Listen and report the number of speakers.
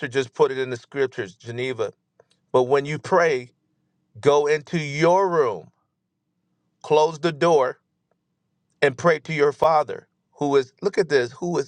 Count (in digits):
1